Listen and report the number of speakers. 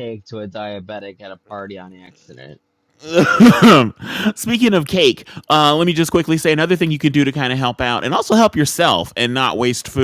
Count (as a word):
two